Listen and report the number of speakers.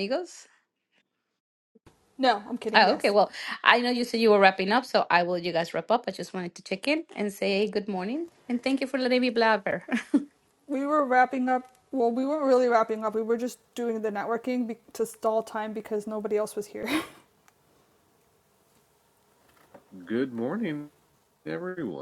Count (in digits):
3